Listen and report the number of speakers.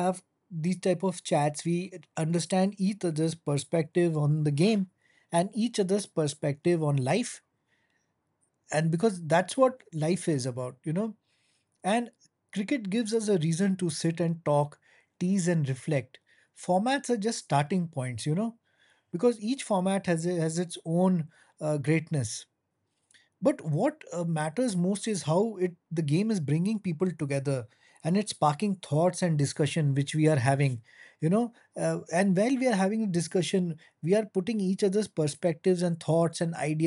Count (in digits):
1